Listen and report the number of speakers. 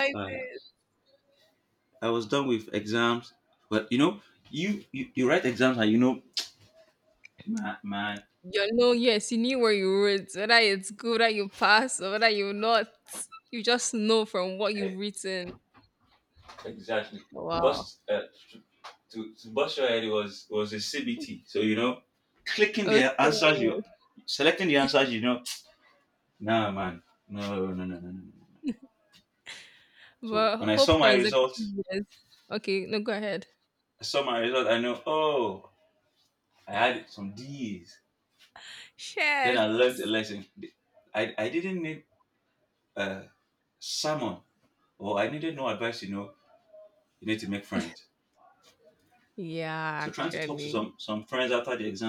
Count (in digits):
2